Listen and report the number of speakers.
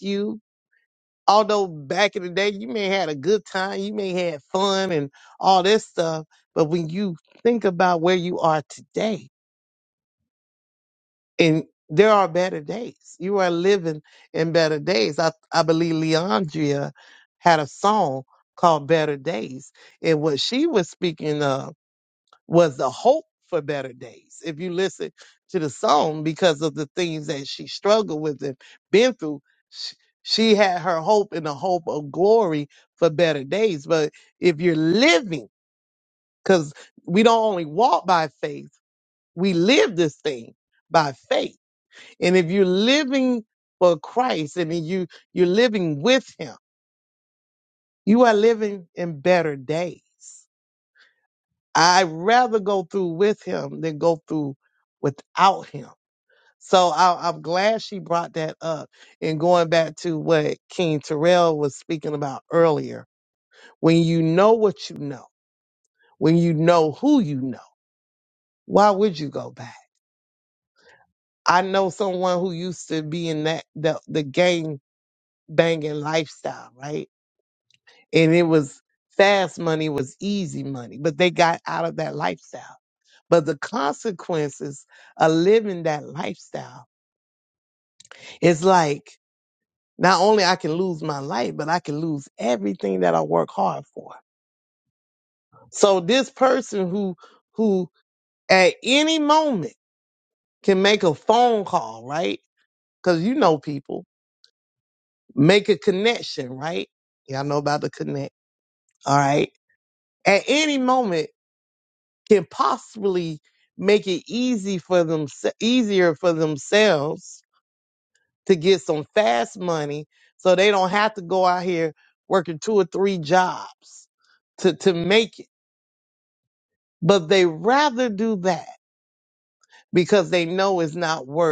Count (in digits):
1